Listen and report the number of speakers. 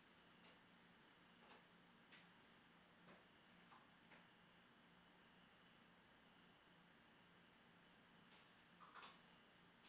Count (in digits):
0